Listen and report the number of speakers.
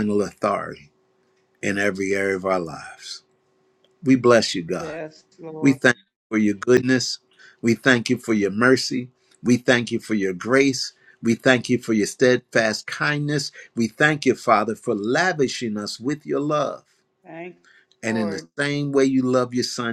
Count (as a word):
two